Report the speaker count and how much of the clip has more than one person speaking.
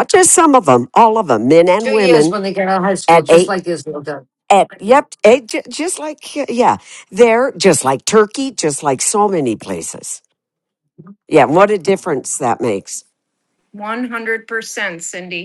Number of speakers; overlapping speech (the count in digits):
3, about 6%